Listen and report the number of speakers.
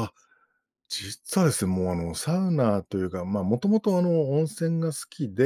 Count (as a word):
one